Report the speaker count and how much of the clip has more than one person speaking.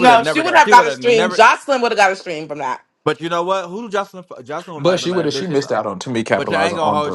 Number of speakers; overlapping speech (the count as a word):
three, about 44%